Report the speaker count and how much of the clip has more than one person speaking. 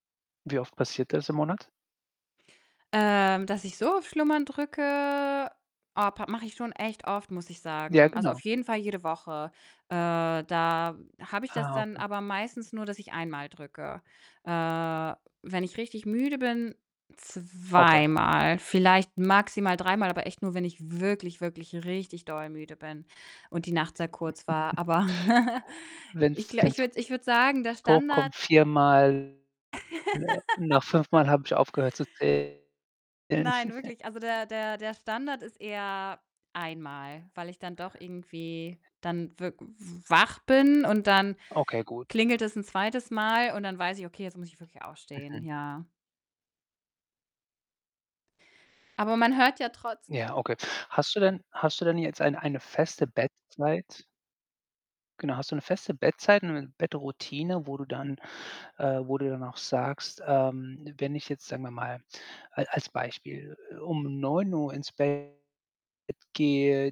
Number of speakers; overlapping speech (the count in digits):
2, about 4%